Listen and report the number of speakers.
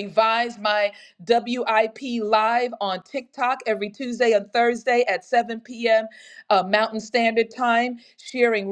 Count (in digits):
1